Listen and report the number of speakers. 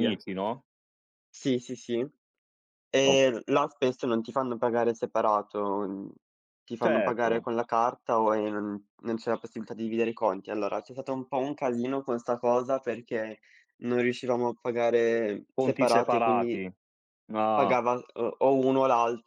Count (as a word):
two